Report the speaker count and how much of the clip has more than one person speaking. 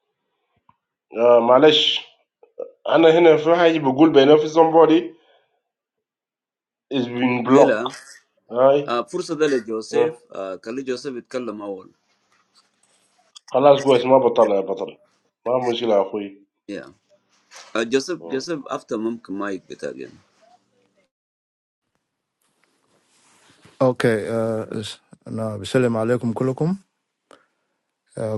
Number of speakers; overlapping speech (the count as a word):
three, about 3%